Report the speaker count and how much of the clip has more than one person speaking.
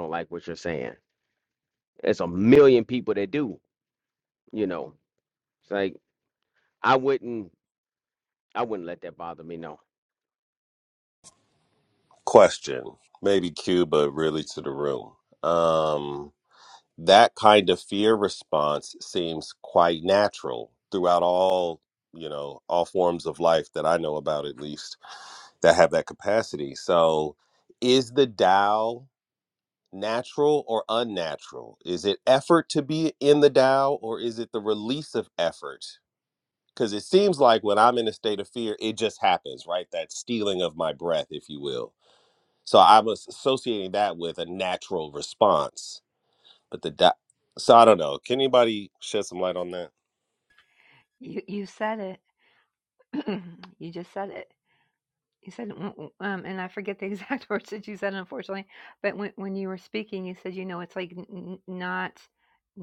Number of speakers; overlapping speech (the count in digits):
3, no overlap